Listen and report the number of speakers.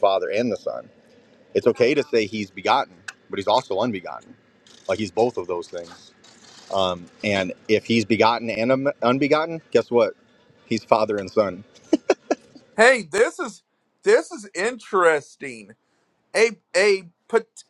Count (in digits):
2